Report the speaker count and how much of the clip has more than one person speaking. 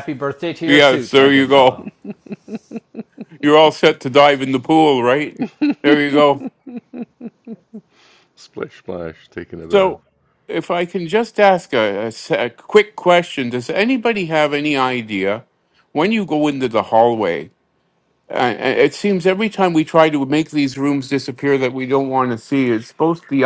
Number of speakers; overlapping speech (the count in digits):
3, about 6%